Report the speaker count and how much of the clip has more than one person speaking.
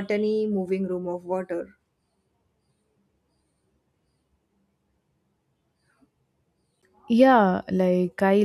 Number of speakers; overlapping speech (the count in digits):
2, no overlap